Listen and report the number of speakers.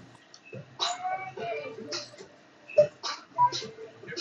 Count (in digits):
0